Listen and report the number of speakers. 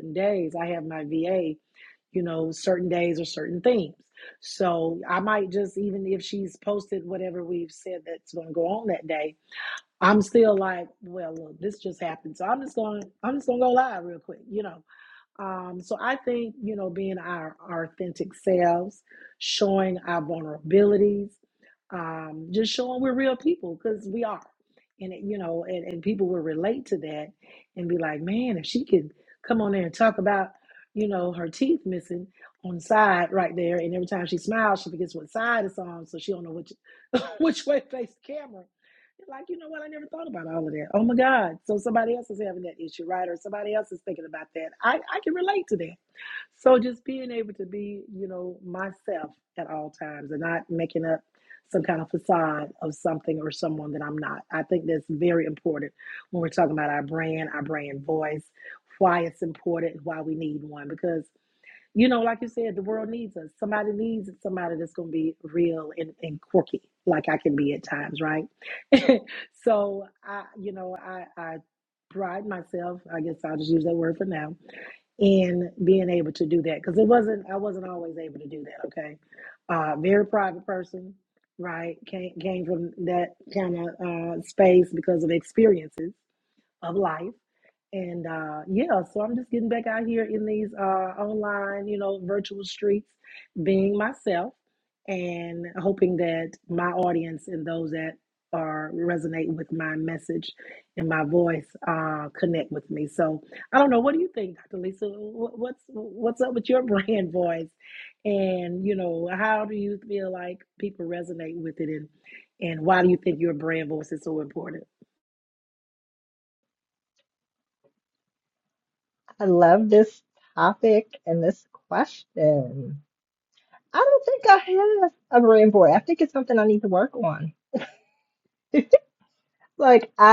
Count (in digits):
2